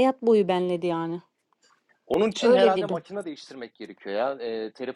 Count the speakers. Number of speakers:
two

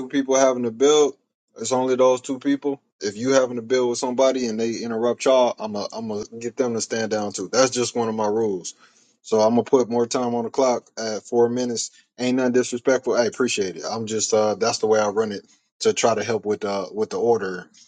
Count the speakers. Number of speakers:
one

